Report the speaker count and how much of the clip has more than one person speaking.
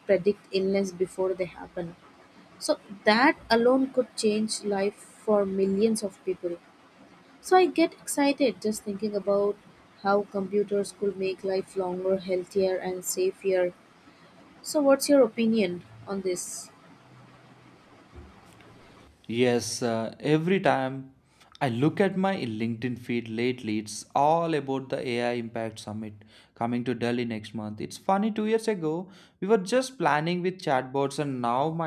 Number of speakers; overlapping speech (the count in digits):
2, no overlap